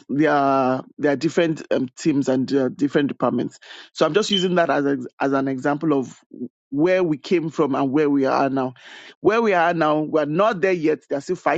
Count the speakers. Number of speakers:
one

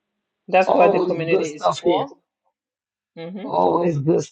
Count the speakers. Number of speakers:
two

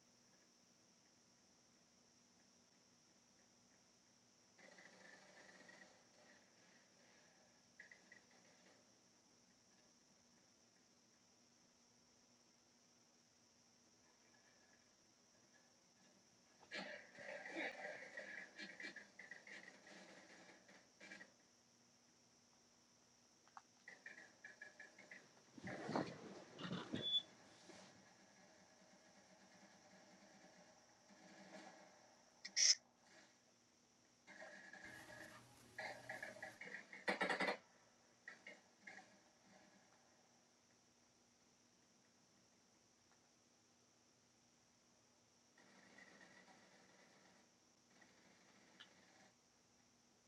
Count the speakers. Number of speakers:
zero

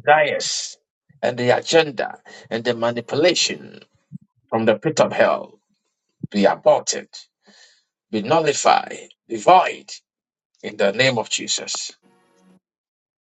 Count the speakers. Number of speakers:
one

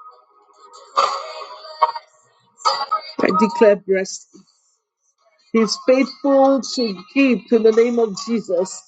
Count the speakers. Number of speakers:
one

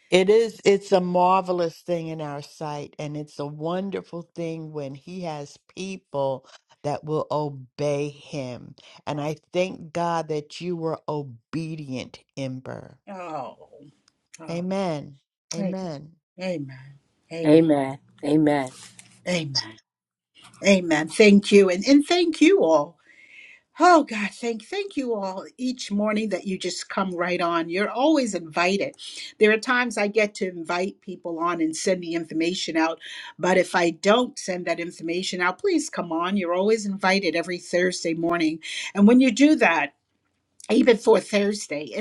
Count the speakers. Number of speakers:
three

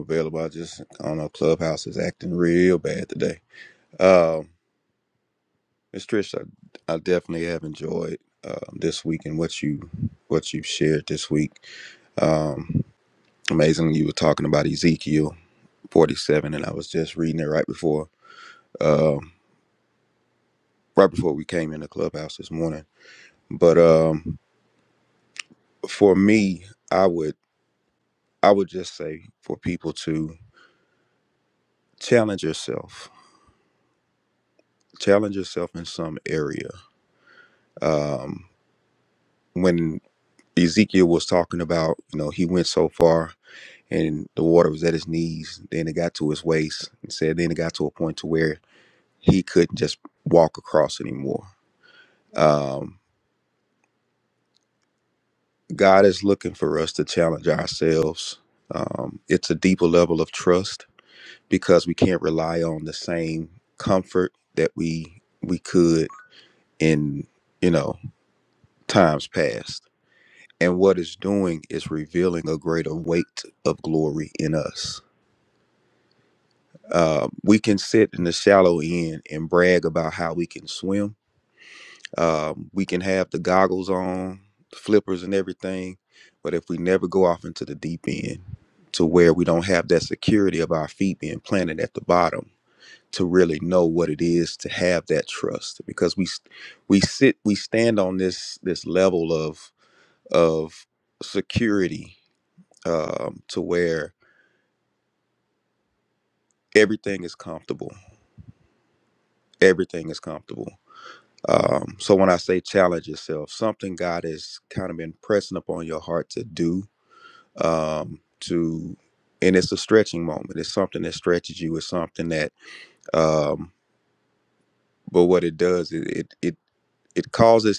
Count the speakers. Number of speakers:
one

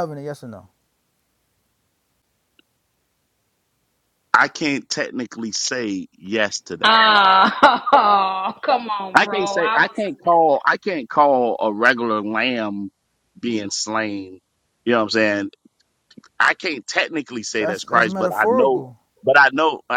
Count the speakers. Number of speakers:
three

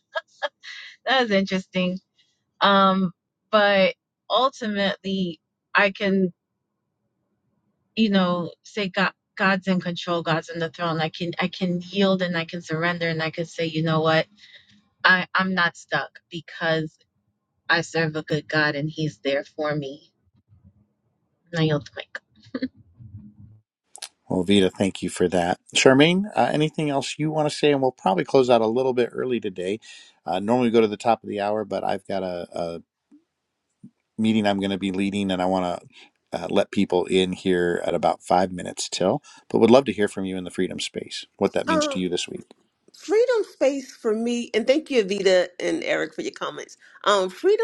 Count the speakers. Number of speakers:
three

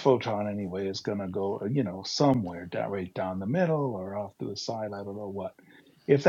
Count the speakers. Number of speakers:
one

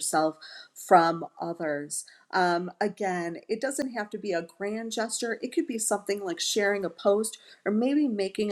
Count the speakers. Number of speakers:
one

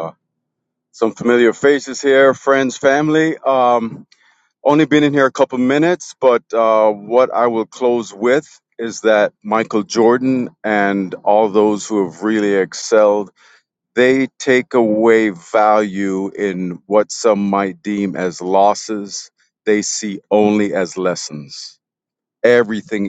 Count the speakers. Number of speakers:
one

